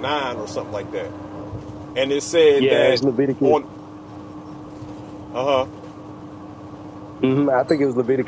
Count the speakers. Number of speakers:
two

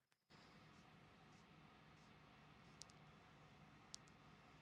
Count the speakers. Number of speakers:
zero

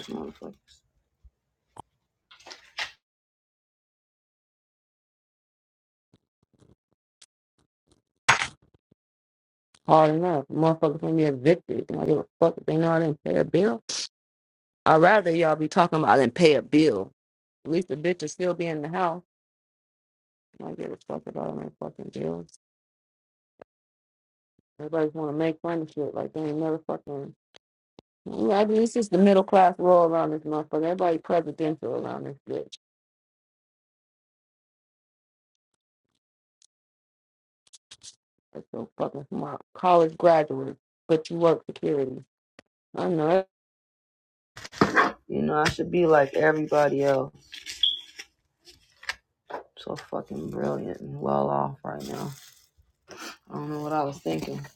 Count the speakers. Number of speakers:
one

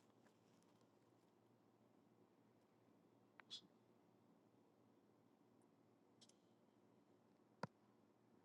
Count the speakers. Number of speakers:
zero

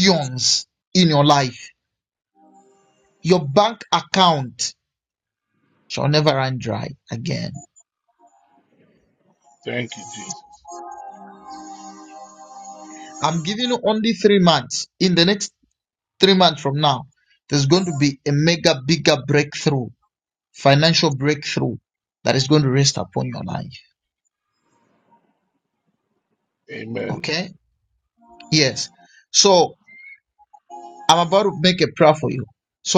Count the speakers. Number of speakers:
two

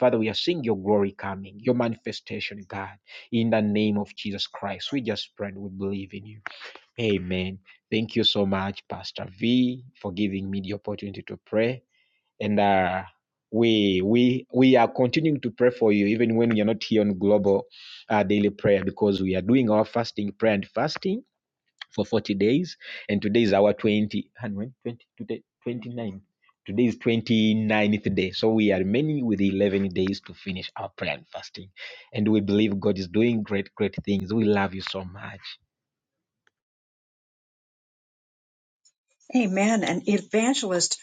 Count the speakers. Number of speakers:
two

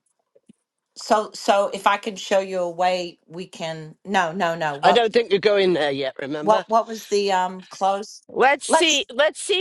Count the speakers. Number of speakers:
three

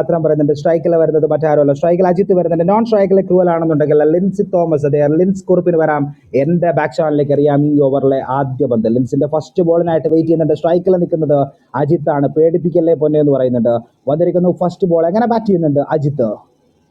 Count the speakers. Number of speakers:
one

